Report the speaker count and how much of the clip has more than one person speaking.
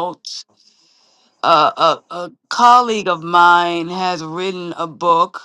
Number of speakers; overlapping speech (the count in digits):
1, no overlap